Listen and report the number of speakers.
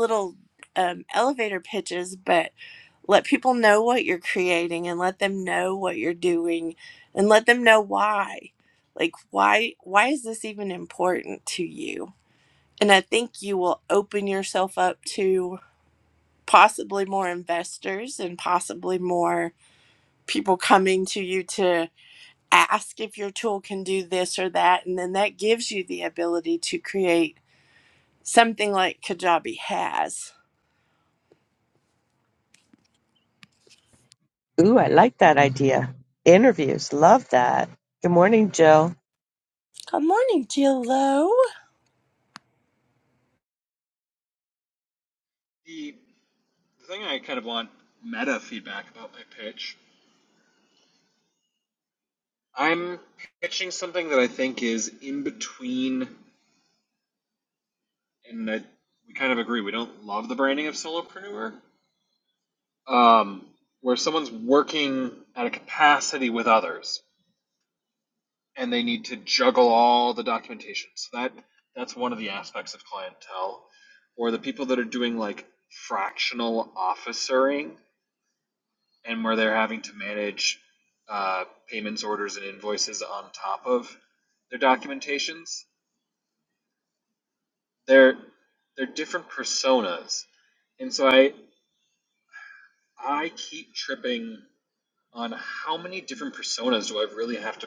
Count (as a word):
three